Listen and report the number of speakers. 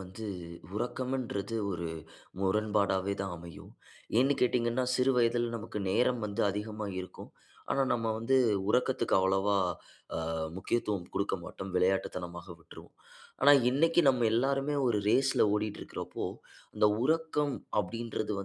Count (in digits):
1